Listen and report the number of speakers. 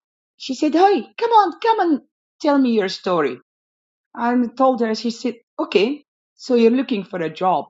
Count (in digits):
1